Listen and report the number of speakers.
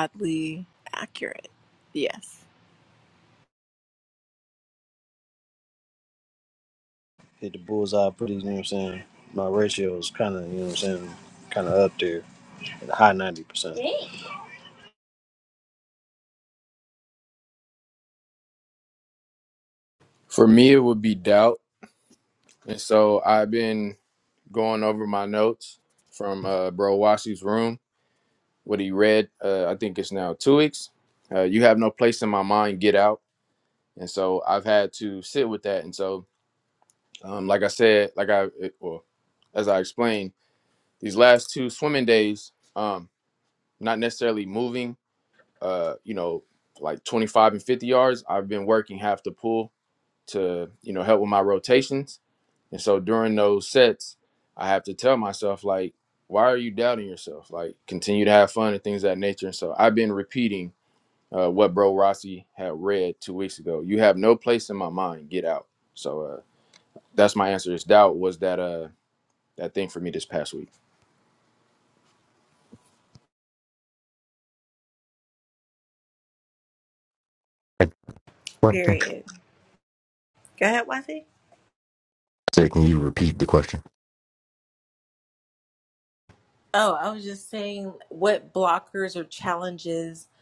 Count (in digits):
4